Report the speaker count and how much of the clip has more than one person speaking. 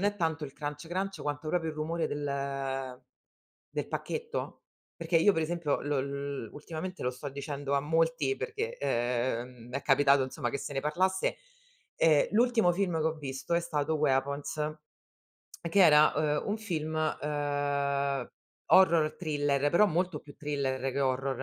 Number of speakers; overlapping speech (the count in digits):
1, no overlap